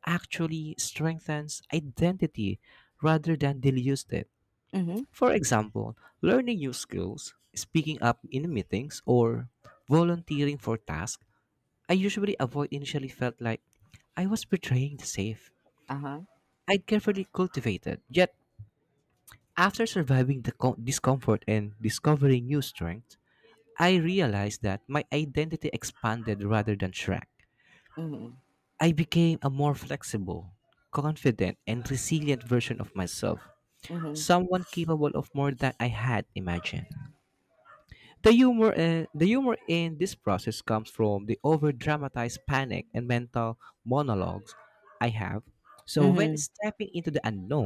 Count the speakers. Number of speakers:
two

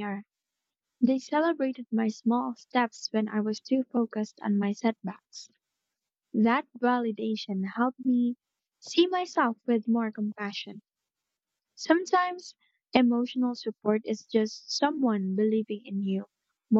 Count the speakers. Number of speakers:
one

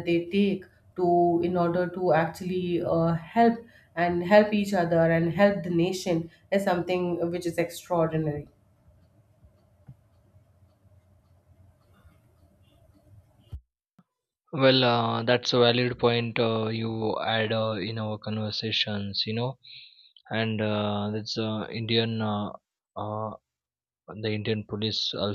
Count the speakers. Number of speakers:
two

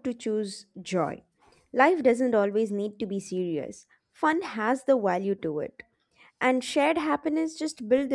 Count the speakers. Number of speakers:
one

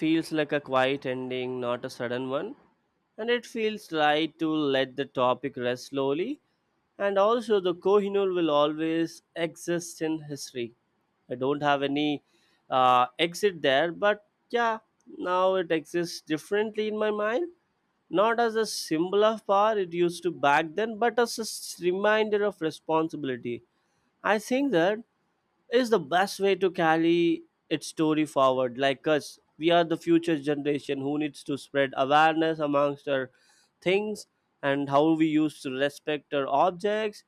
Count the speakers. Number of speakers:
one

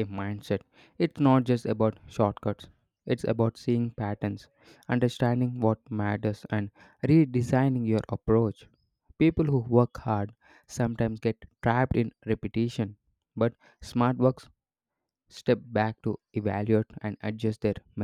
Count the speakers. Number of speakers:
one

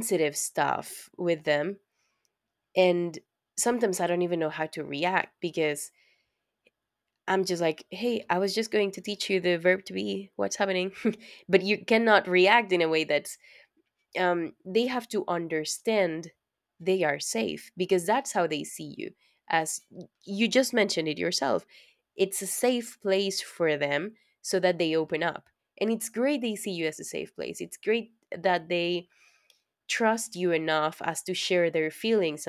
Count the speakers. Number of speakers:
one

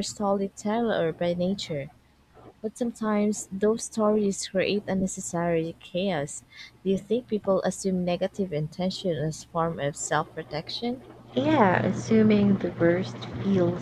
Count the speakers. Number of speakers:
two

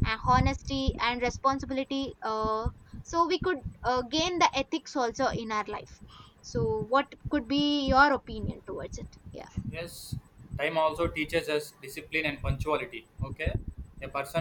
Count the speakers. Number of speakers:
two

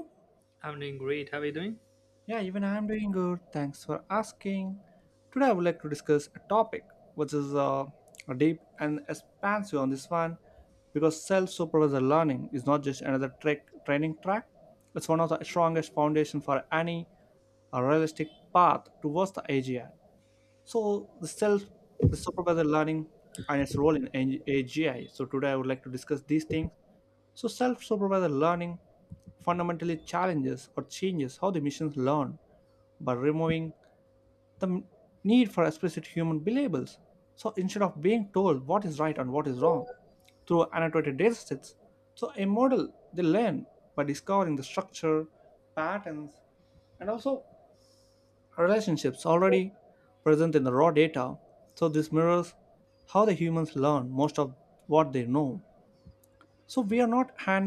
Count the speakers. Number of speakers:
two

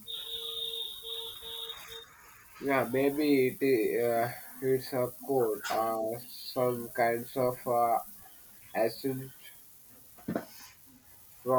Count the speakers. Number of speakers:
one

